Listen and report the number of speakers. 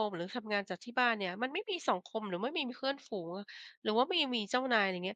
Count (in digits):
1